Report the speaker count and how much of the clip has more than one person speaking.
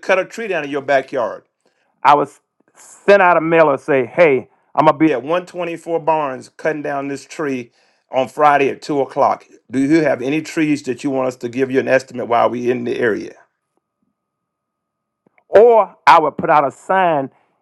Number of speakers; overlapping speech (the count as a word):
one, no overlap